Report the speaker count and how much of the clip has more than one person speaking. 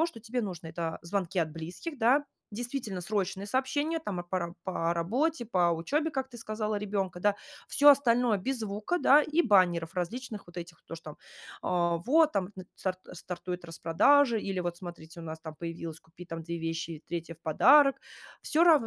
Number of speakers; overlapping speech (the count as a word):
one, no overlap